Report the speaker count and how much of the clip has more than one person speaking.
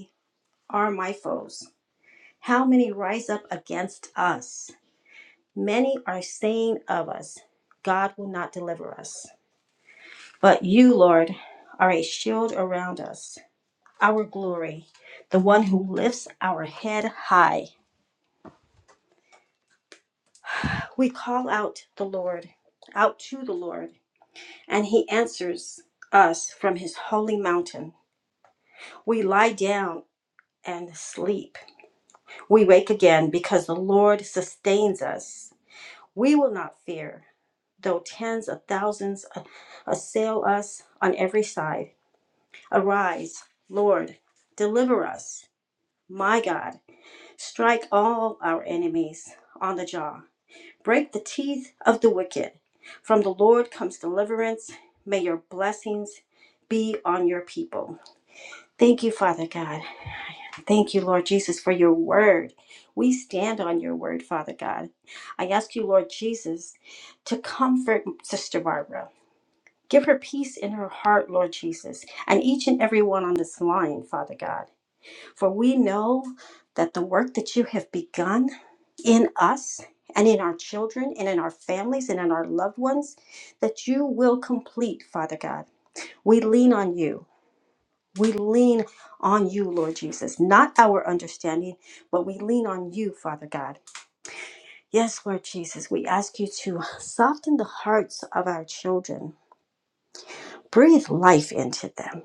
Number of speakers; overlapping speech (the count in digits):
1, no overlap